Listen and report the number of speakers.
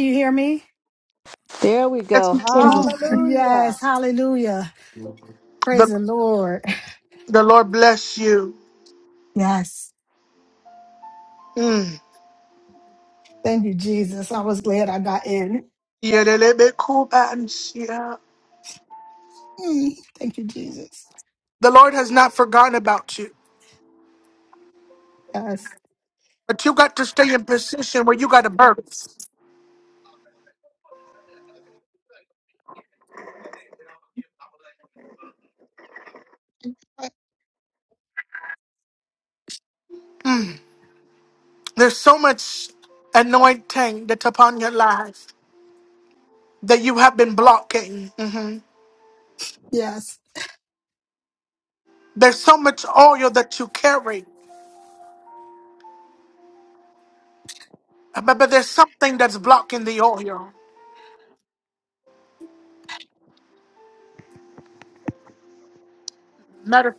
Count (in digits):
3